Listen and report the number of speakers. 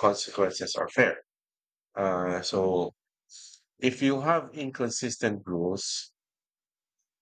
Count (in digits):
1